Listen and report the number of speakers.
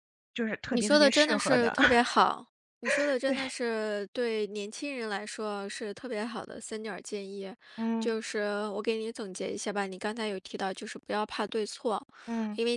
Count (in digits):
2